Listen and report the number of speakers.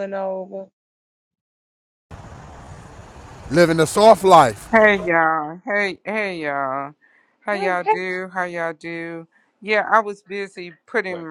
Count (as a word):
three